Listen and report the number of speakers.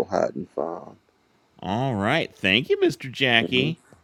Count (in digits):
2